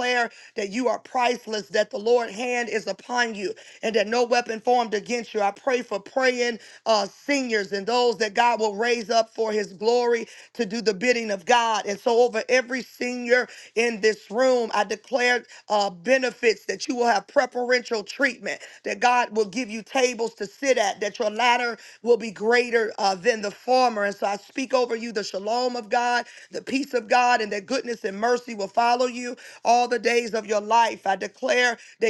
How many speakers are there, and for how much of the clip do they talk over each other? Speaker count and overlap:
one, no overlap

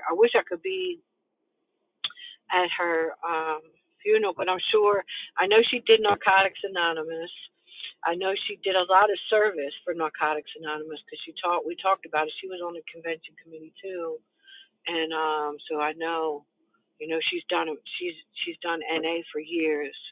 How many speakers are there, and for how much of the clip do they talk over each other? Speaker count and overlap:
one, no overlap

